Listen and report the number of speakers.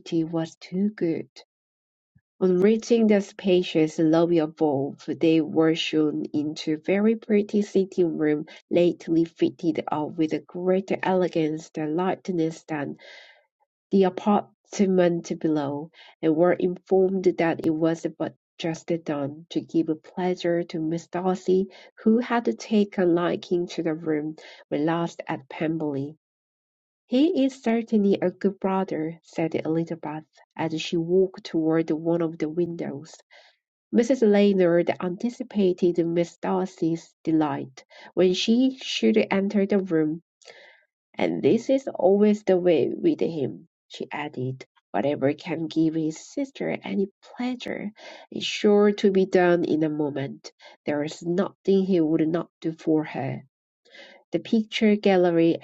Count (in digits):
1